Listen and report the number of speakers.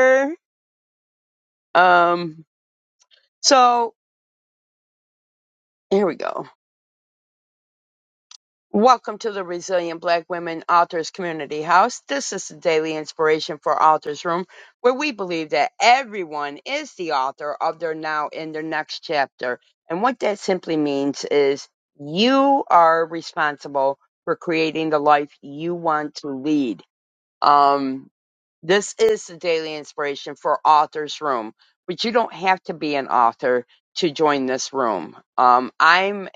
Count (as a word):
one